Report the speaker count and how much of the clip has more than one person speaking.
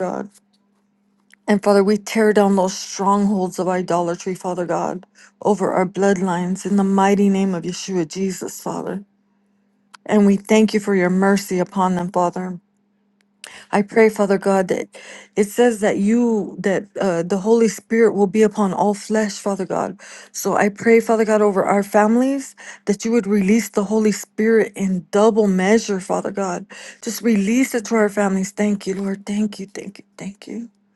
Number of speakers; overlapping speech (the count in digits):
1, no overlap